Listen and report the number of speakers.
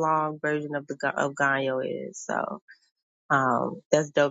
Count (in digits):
1